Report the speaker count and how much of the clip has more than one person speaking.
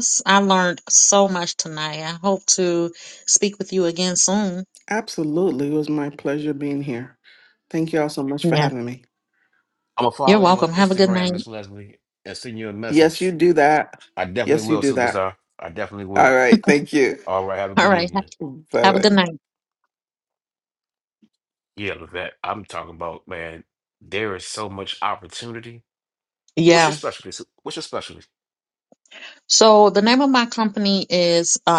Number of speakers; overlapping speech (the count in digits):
3, about 12%